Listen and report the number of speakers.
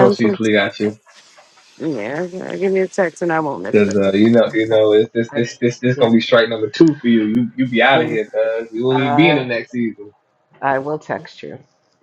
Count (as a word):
three